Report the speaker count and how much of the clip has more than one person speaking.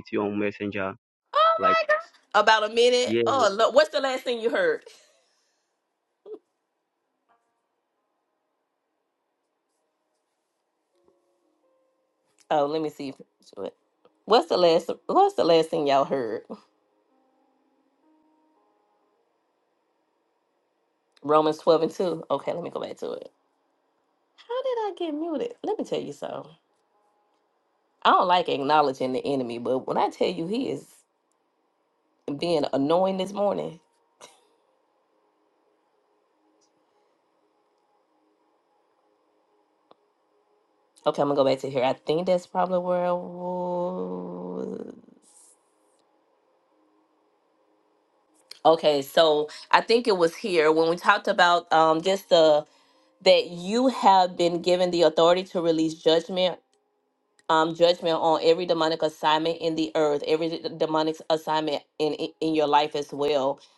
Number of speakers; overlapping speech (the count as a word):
two, about 1%